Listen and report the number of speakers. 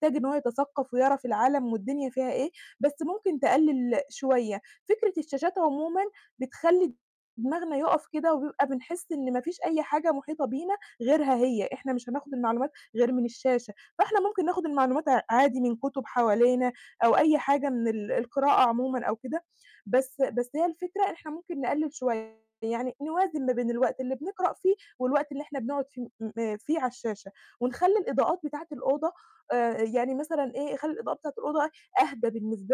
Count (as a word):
one